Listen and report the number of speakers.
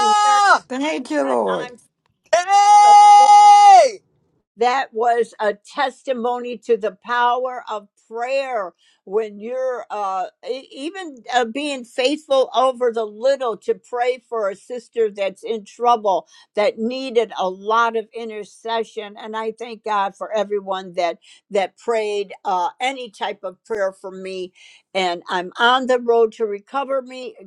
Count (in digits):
3